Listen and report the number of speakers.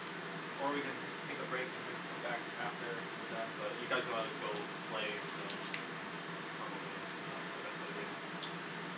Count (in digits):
1